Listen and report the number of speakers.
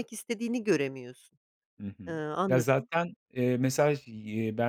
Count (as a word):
two